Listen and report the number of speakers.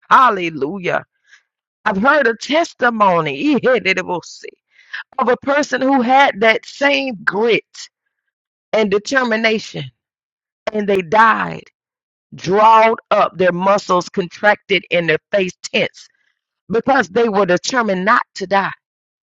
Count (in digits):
1